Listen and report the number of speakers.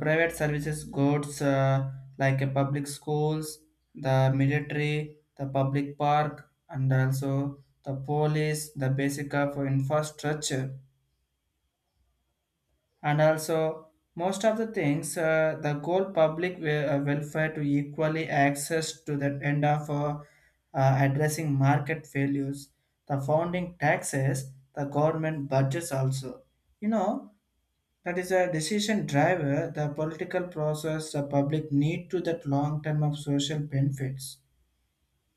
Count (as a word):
one